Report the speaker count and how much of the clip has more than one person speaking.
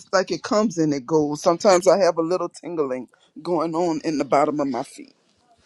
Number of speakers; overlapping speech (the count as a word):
one, no overlap